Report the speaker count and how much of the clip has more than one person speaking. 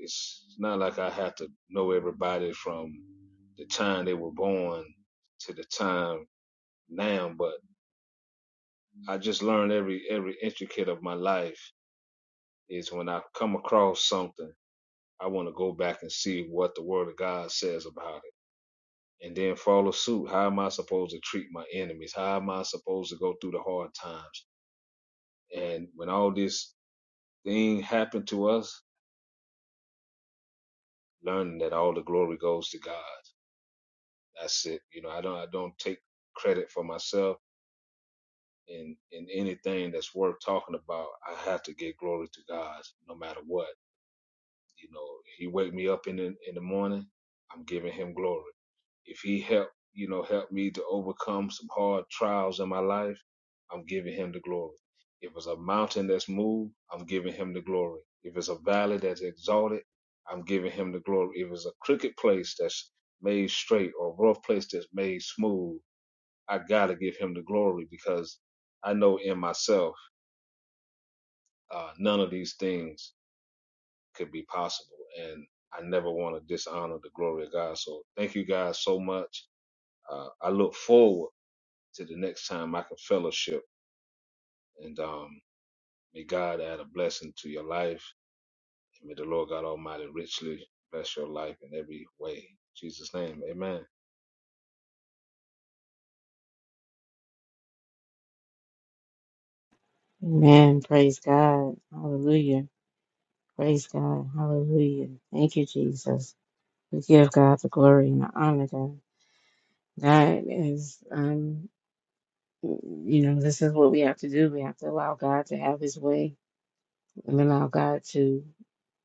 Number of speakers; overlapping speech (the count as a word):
two, no overlap